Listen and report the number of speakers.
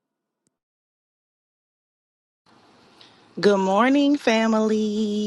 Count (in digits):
1